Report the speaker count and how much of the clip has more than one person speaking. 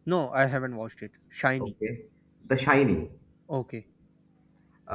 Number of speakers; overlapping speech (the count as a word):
two, about 3%